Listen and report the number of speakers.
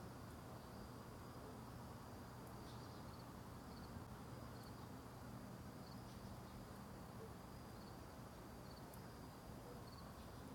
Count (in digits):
0